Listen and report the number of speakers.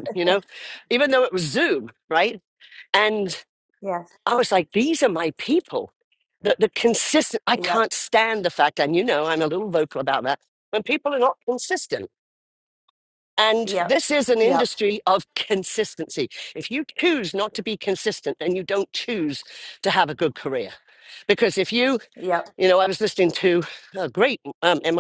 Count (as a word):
two